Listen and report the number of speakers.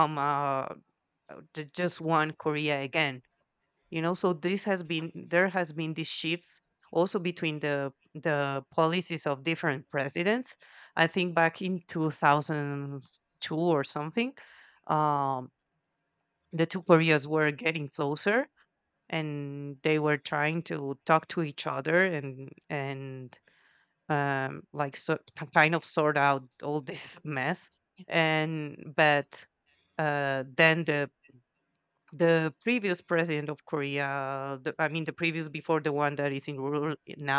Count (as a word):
one